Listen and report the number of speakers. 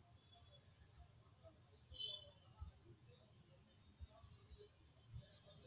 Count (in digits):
0